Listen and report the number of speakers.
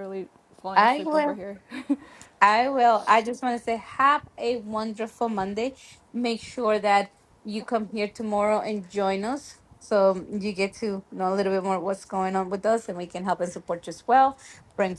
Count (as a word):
two